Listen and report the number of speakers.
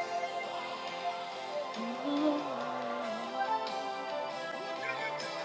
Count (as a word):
zero